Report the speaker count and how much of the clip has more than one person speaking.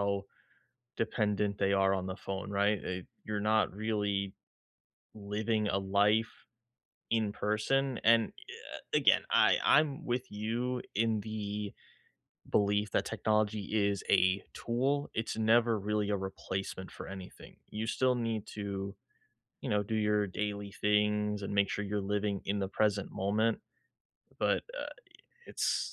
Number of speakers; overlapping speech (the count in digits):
1, no overlap